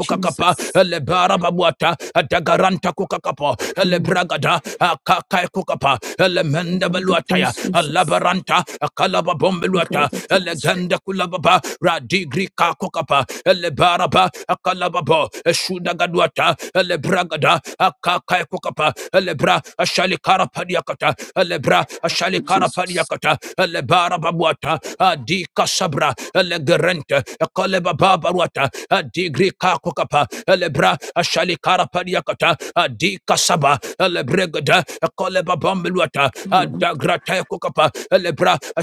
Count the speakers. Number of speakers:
two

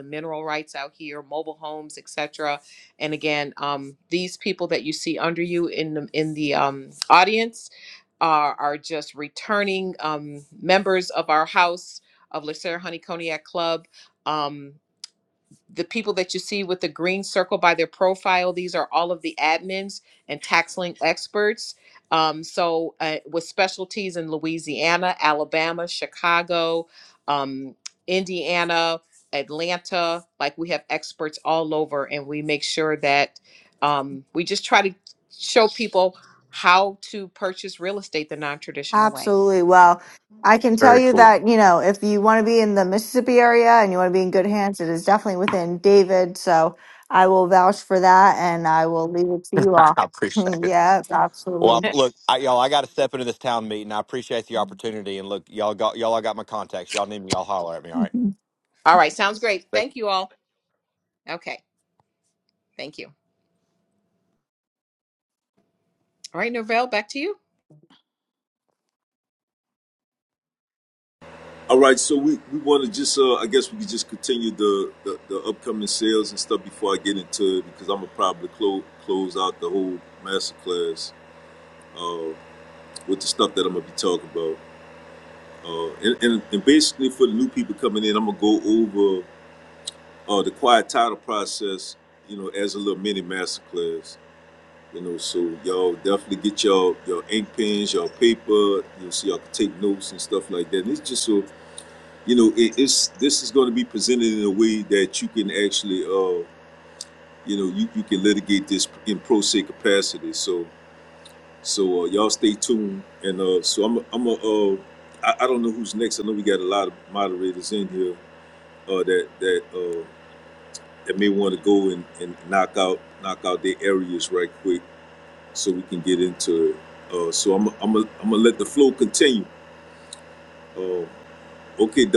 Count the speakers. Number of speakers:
four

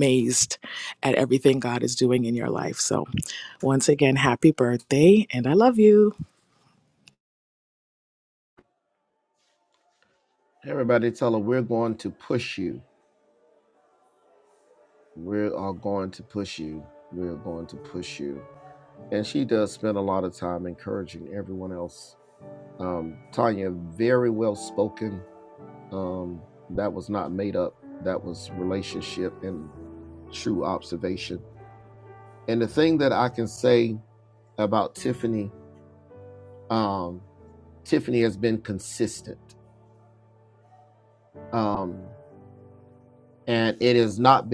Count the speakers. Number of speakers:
two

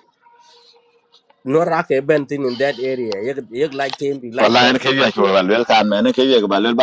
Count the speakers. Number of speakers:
two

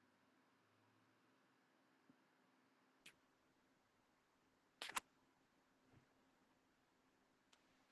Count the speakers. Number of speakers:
zero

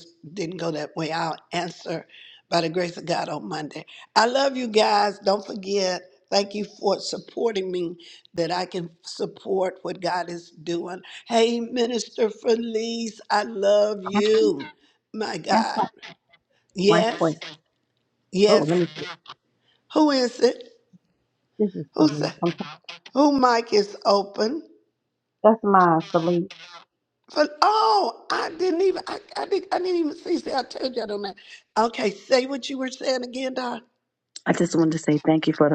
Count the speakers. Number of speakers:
two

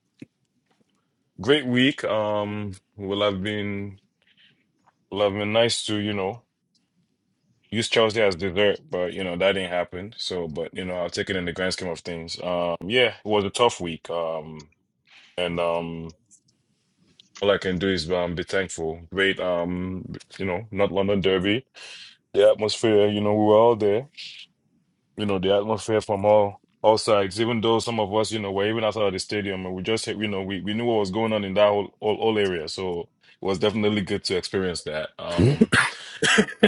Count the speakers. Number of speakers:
one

